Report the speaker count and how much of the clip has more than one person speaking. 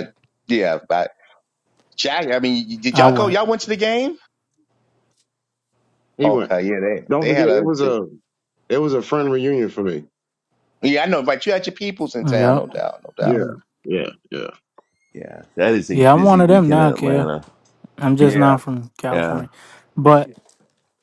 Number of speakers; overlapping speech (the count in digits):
4, about 18%